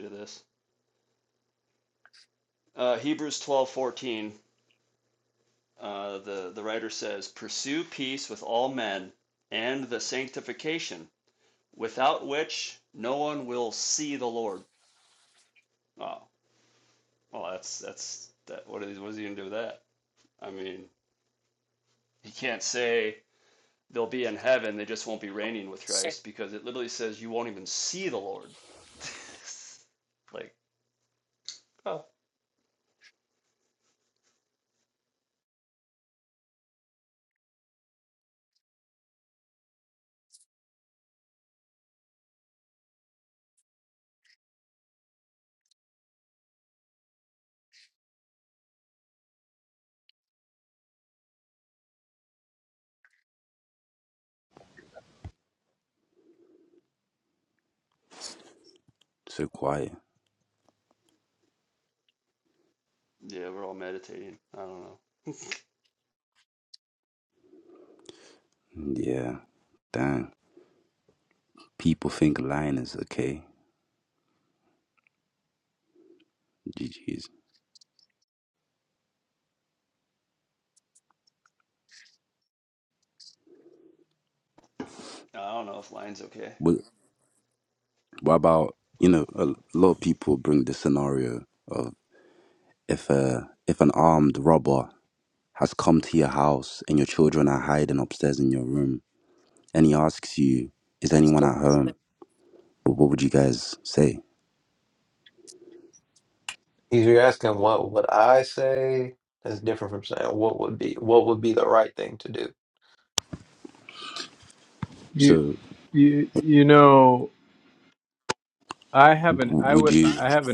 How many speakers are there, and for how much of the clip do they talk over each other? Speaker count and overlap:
4, about 1%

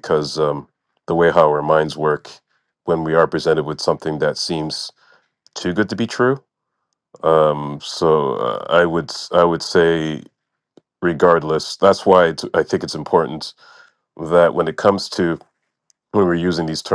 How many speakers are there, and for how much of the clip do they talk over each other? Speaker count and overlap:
1, no overlap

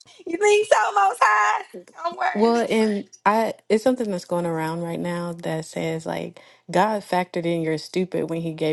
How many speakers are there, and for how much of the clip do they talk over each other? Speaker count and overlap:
2, about 3%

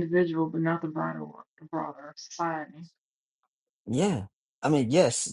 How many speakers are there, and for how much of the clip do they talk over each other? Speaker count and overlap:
2, no overlap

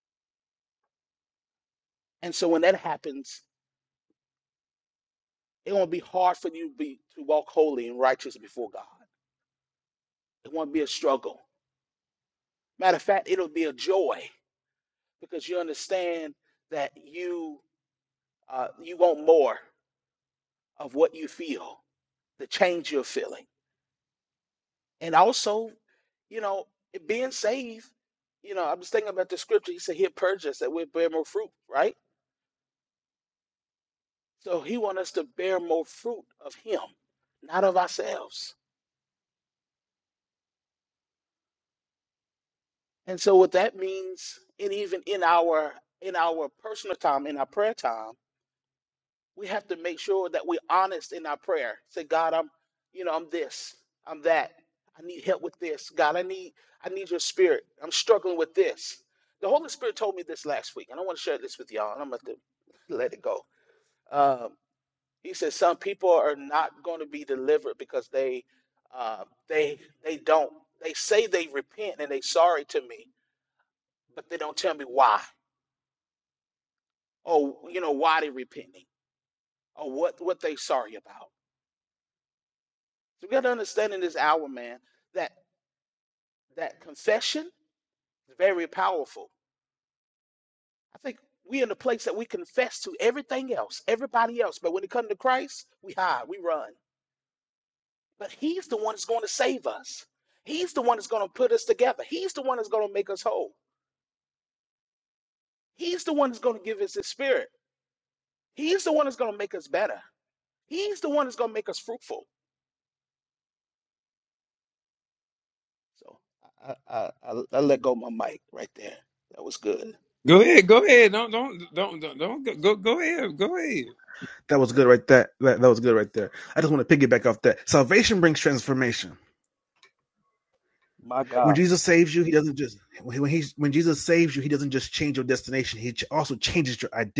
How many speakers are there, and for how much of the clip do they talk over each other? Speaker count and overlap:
3, under 1%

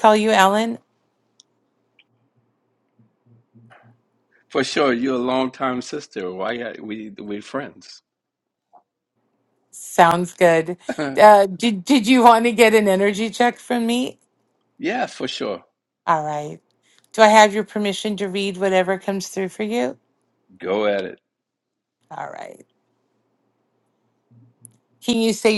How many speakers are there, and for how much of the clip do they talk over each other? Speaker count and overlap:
2, no overlap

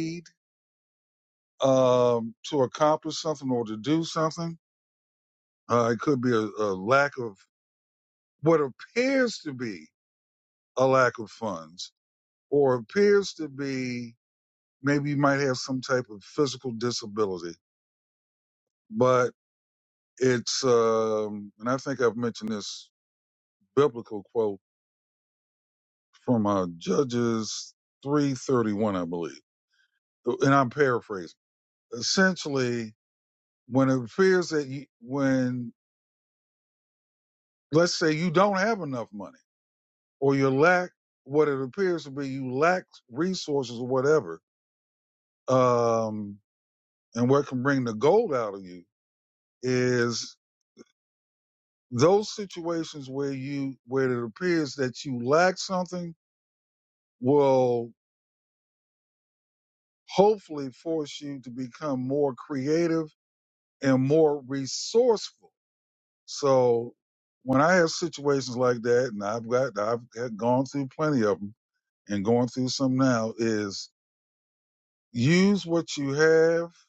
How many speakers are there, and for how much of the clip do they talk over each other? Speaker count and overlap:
1, no overlap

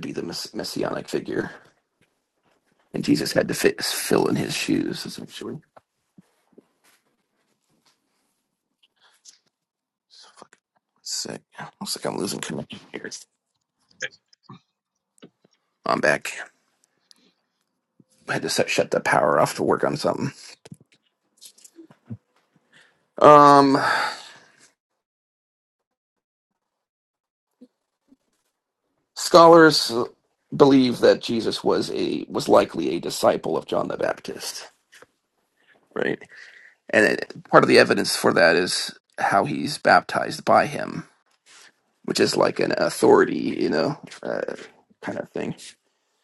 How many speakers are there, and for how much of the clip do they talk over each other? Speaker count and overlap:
1, no overlap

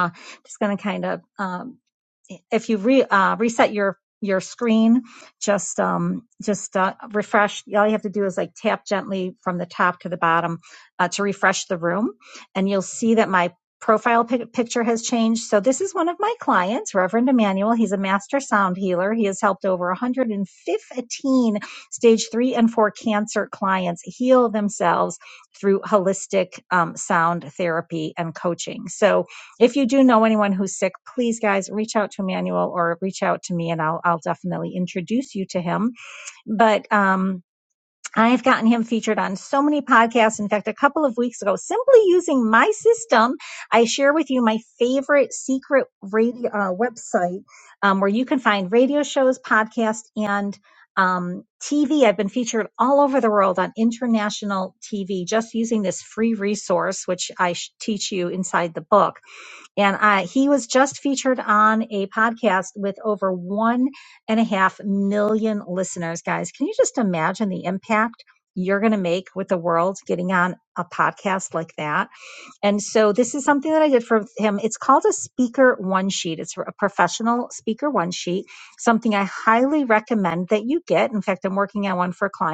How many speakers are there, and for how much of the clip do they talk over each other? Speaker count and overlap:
1, no overlap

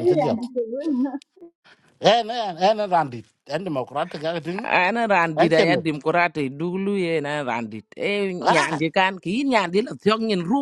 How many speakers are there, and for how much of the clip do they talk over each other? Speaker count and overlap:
3, about 13%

